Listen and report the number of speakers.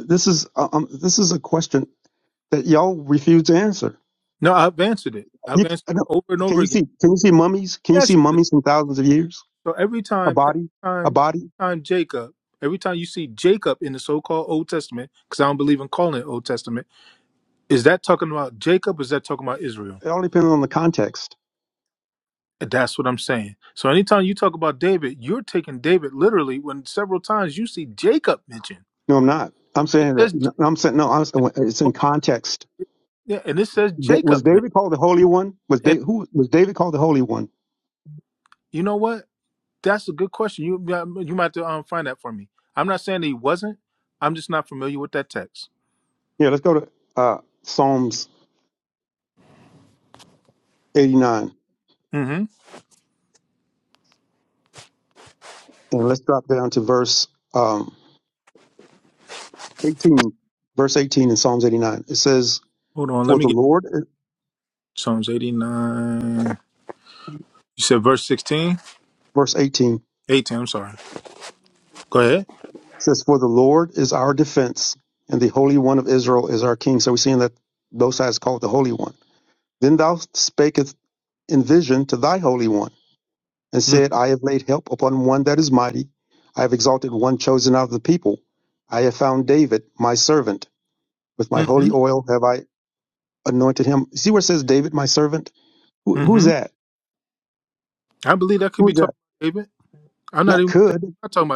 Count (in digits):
2